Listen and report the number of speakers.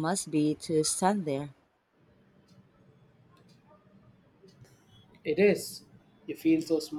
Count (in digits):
2